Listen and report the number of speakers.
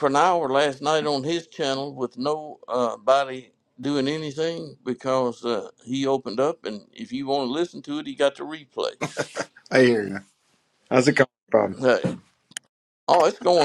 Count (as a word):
two